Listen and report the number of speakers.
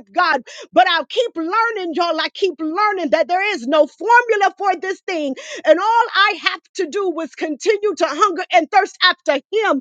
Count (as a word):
one